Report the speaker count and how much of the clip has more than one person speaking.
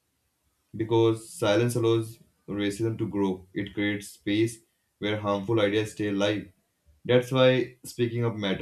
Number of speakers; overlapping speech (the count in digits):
1, no overlap